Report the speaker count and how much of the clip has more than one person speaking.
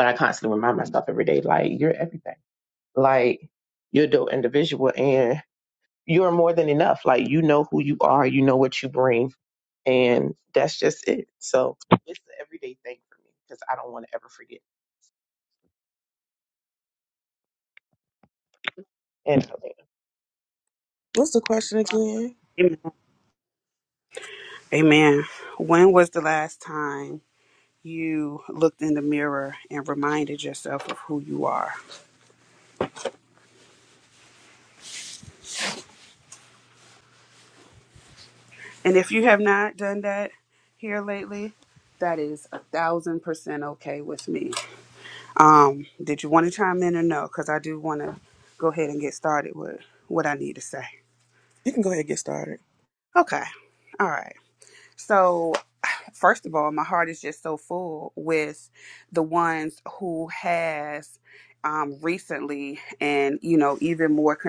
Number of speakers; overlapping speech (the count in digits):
3, no overlap